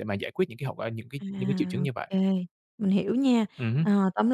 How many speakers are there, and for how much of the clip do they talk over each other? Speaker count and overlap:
two, about 11%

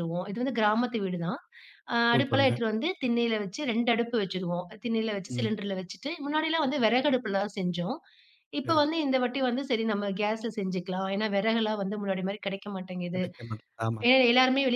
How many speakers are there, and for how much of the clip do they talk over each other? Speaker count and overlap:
two, about 6%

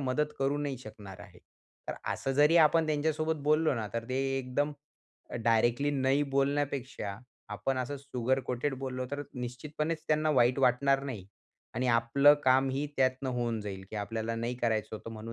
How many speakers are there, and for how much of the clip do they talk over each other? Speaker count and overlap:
one, no overlap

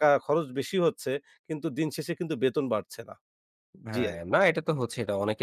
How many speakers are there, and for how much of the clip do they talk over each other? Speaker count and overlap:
two, about 3%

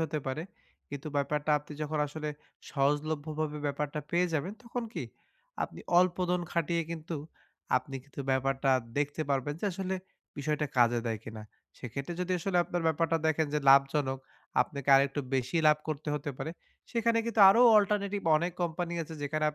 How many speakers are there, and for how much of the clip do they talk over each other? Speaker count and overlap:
one, no overlap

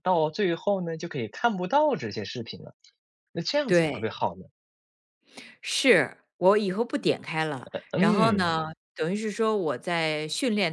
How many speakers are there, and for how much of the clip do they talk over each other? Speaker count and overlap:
two, about 10%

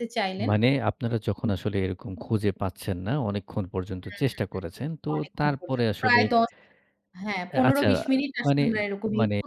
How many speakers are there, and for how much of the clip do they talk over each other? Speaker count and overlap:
two, about 28%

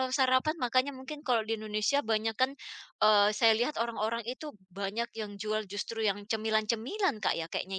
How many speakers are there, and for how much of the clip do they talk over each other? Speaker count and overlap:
one, no overlap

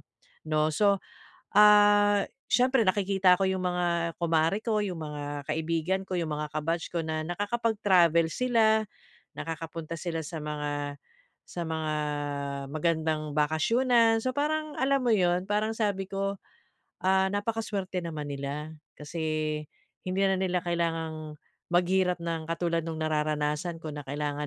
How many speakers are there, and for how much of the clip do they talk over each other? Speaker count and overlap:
one, no overlap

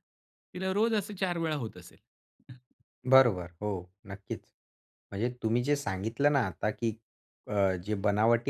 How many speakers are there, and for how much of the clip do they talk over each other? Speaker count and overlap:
two, no overlap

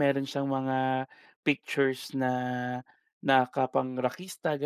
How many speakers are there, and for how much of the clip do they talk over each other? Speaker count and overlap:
one, no overlap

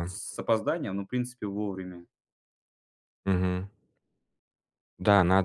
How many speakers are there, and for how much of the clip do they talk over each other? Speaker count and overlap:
two, no overlap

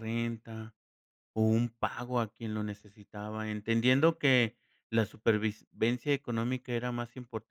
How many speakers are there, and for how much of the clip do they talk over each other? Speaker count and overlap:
one, no overlap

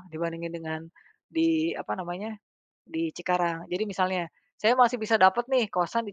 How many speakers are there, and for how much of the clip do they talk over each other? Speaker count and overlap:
one, no overlap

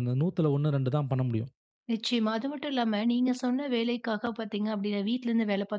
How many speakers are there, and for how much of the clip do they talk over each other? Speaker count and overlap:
two, no overlap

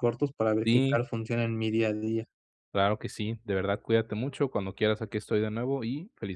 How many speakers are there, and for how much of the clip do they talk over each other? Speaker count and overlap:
two, about 5%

